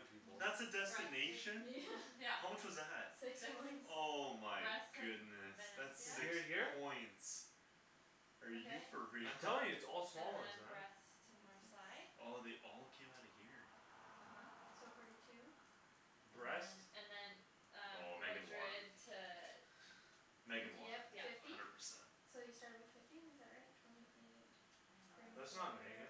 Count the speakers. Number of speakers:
four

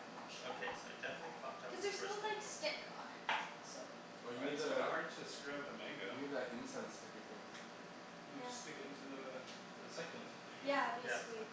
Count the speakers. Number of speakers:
four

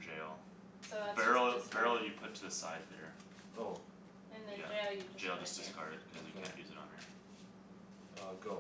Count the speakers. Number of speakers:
three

